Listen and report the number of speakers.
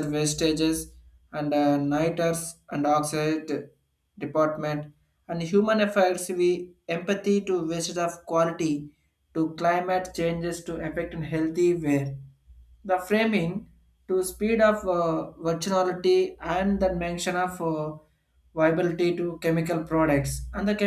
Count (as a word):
one